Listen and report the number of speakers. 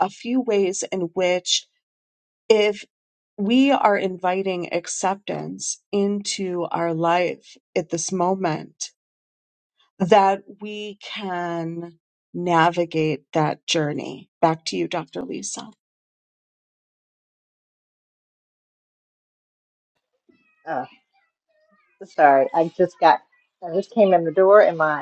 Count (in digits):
2